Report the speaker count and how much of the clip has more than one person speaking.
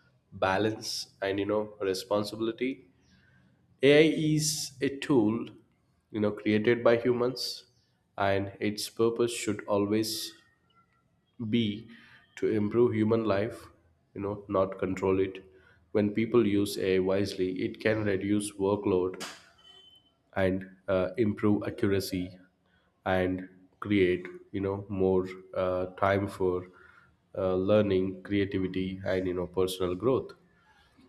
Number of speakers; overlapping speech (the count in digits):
1, no overlap